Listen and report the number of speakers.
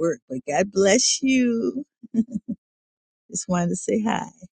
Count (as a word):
one